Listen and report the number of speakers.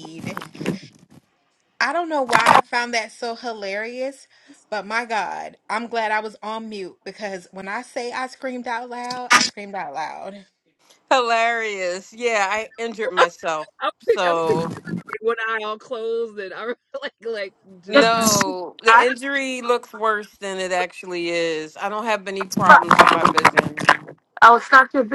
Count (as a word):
four